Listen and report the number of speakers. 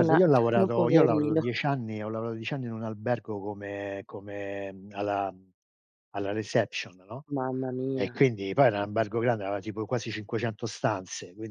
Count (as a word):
two